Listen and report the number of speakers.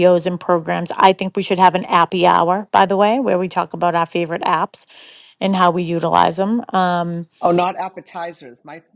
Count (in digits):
2